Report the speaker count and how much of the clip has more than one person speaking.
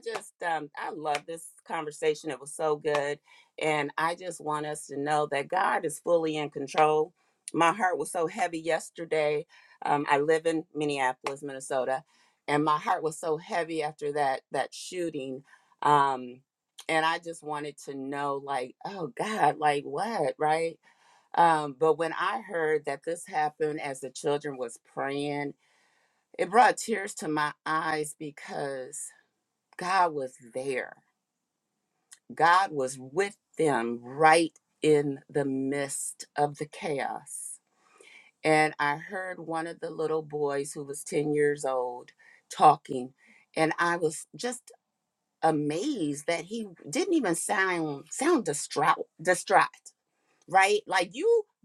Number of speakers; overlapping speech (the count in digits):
1, no overlap